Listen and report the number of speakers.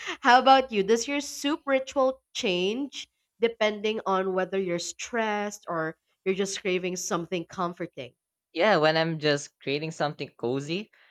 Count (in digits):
2